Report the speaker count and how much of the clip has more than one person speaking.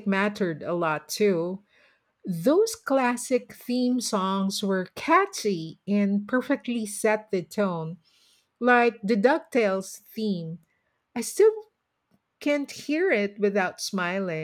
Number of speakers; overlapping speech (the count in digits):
1, no overlap